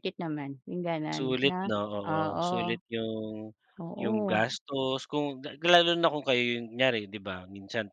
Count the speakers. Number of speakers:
2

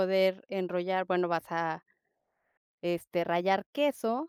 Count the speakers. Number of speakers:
1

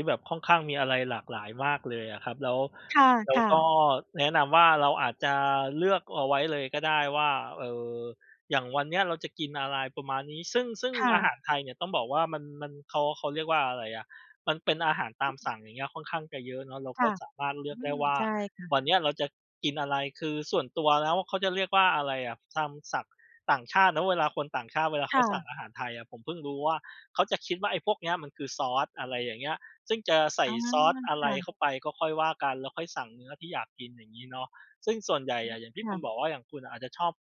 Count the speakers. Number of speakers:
2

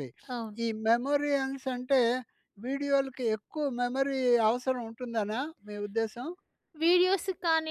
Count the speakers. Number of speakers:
2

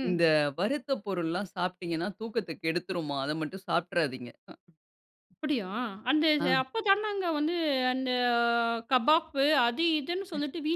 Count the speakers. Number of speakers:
2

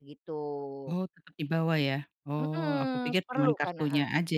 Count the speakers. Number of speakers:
2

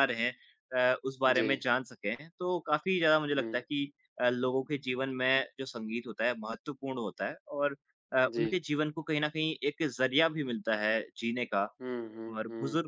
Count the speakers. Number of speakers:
2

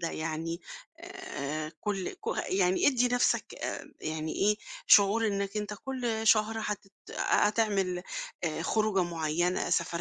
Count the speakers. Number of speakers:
1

